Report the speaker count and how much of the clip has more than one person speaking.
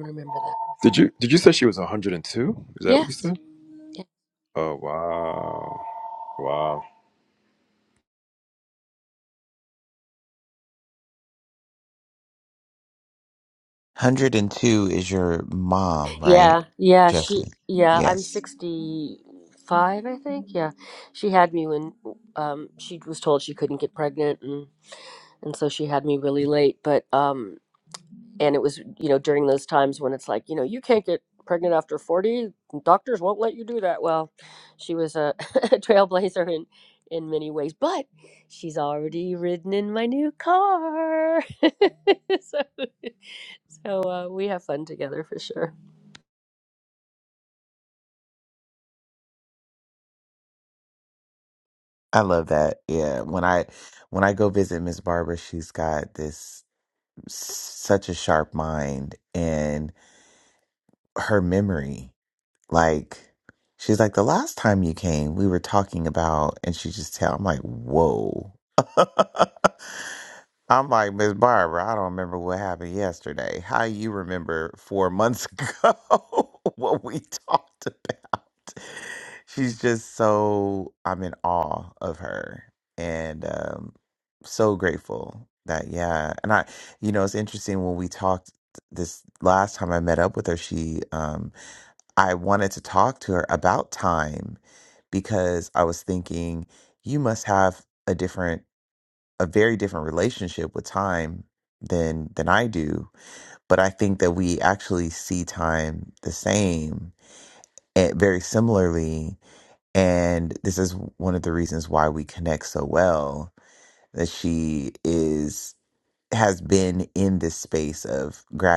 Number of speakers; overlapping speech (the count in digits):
3, about 1%